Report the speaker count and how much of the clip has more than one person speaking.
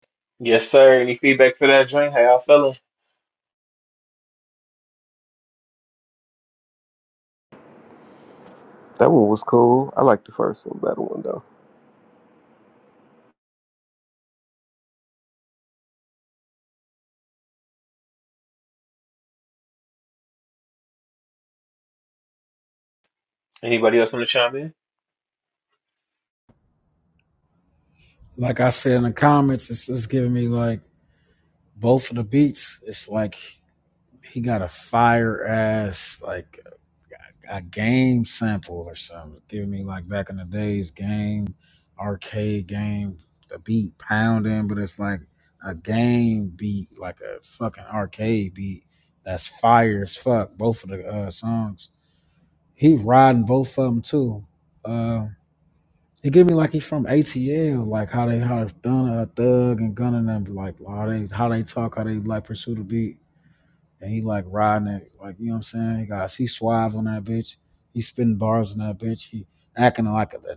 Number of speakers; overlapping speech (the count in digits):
3, no overlap